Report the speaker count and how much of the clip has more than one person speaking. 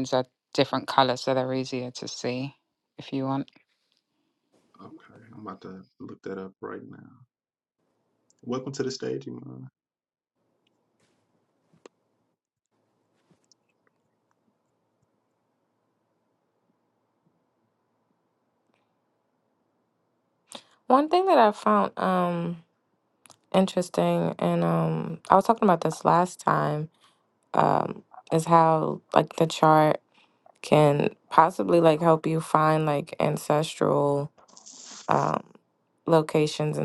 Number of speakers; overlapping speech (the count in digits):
3, no overlap